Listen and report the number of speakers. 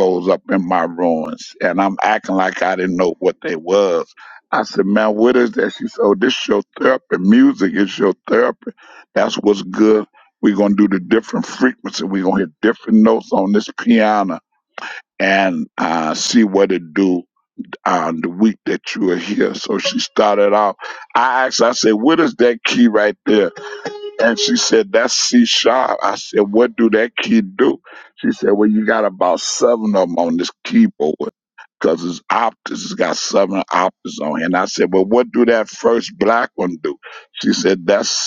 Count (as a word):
one